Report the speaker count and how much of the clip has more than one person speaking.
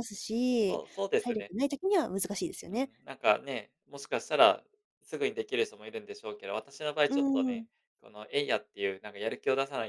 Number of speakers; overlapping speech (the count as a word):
two, about 7%